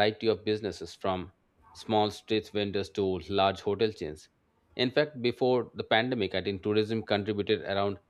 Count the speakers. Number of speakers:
one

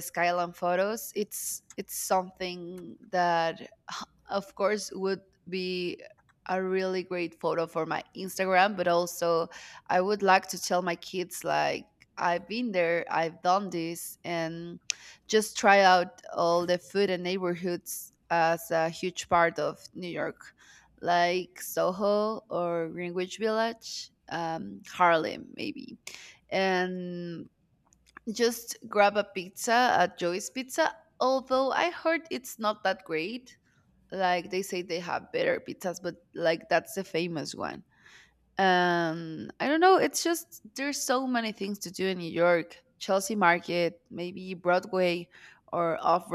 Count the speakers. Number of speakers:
one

